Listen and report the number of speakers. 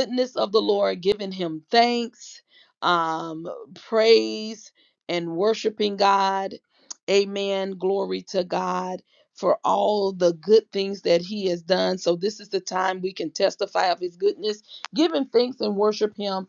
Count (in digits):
1